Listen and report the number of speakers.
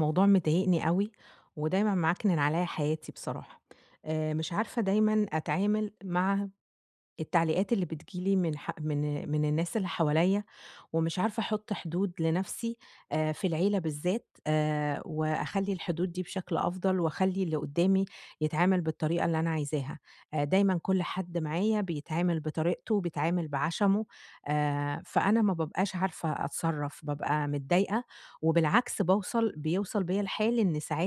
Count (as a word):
one